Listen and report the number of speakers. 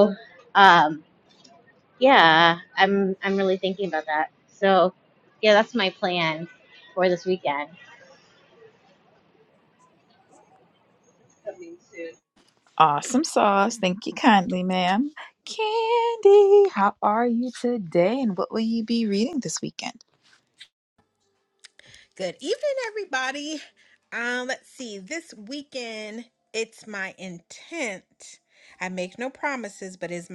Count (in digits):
3